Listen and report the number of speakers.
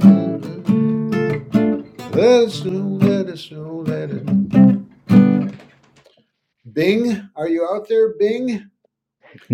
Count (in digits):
1